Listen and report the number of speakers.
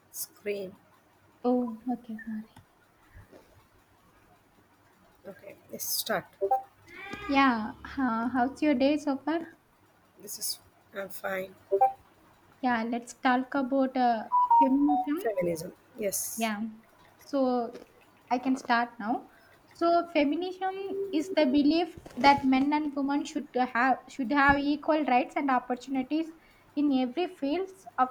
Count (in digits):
2